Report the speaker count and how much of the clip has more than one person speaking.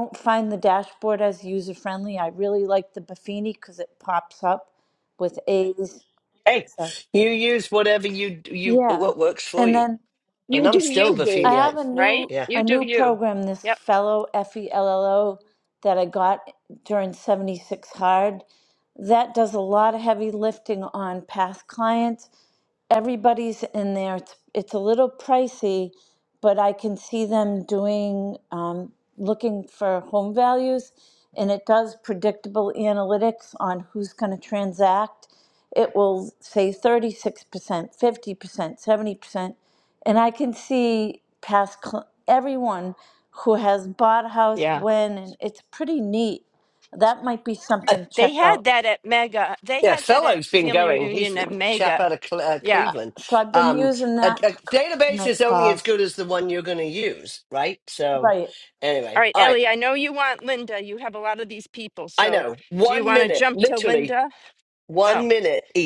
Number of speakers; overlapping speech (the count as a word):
three, about 16%